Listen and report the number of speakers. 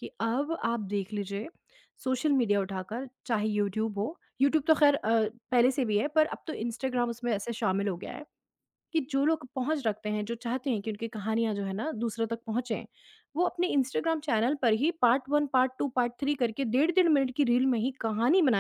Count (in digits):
1